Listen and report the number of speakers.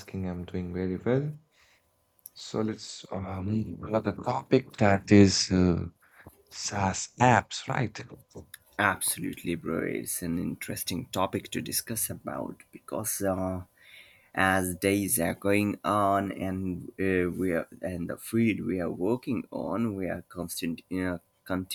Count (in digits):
2